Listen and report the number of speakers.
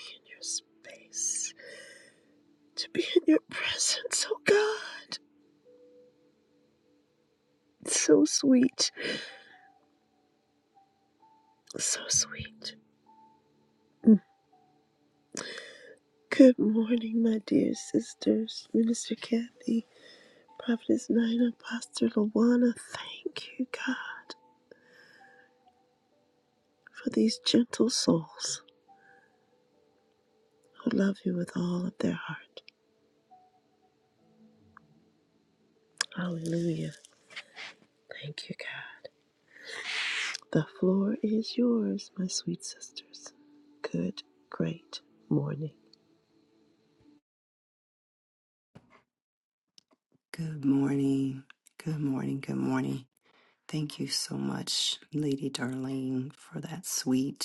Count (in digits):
2